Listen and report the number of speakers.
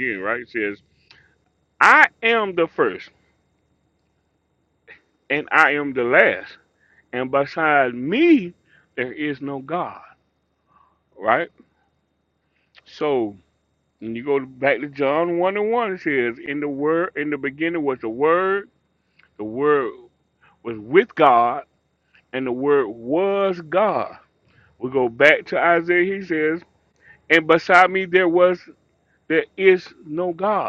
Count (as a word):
one